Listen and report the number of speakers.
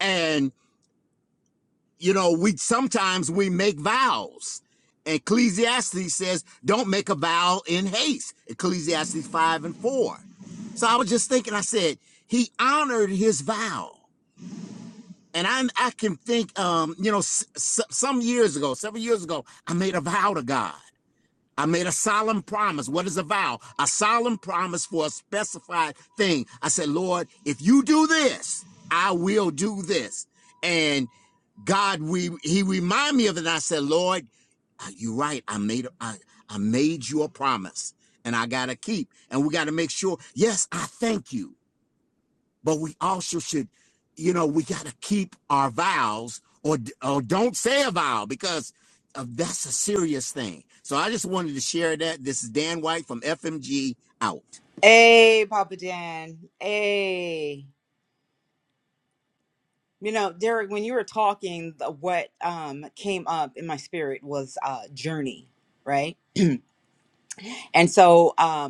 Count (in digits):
2